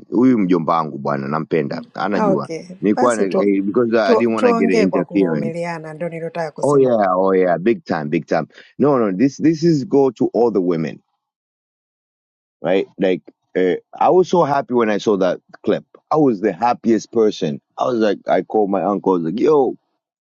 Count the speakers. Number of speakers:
2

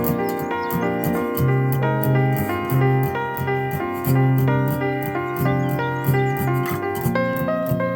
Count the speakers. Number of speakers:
0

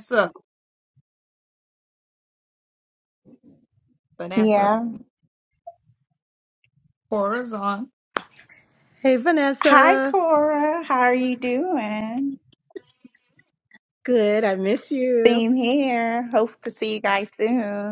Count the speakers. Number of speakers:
3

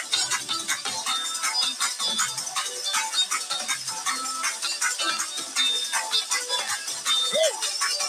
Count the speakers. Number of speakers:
0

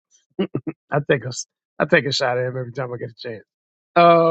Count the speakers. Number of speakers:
1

